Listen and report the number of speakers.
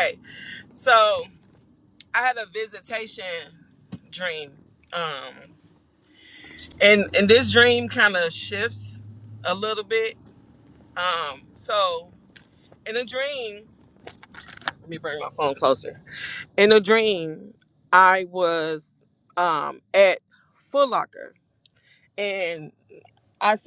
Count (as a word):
one